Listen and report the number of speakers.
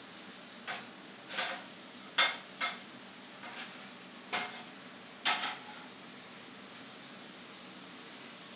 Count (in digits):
0